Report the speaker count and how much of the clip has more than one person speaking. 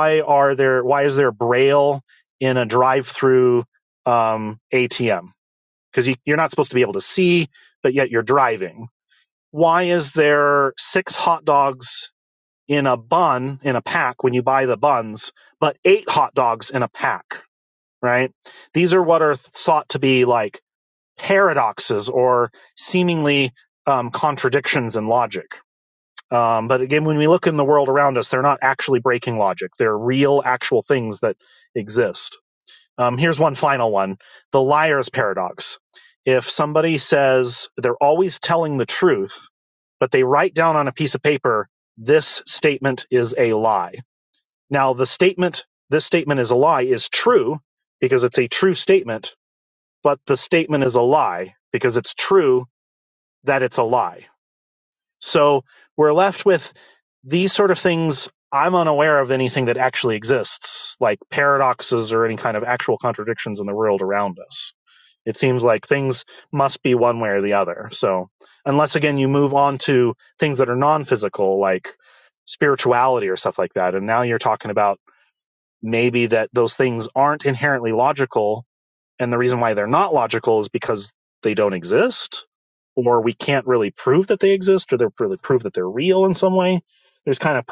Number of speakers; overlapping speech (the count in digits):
1, no overlap